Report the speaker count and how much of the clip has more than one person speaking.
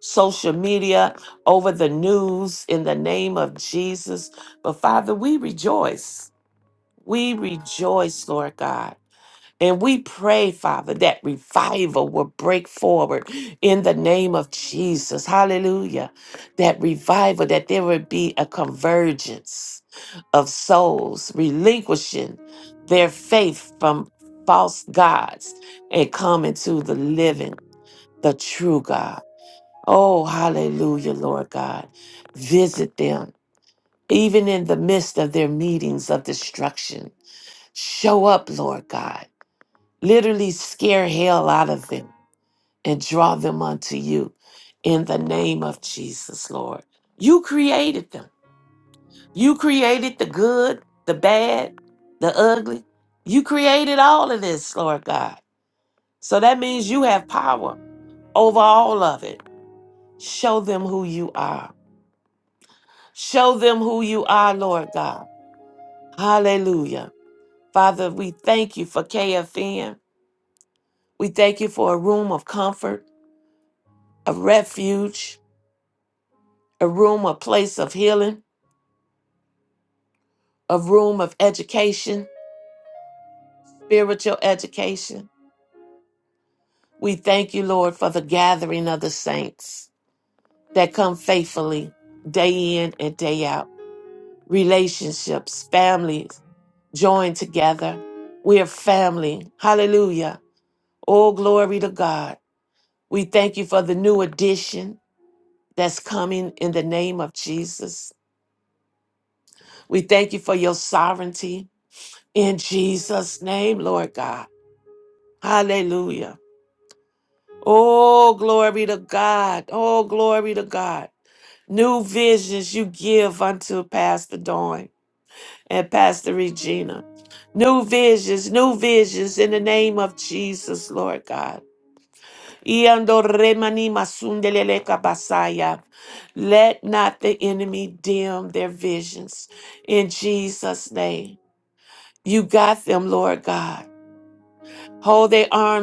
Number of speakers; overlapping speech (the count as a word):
one, no overlap